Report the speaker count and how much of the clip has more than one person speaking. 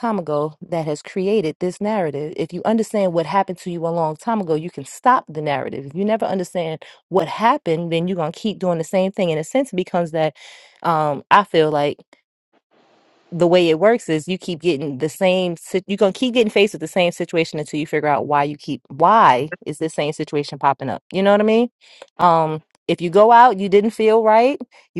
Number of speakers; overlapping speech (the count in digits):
1, no overlap